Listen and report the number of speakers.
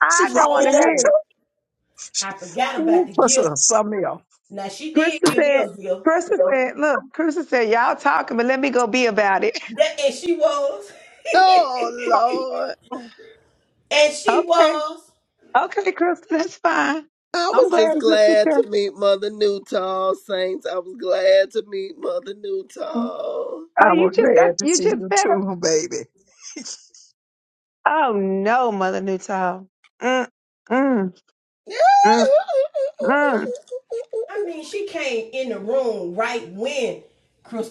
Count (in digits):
4